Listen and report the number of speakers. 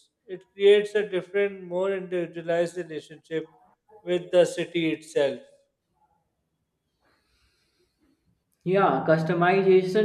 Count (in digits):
2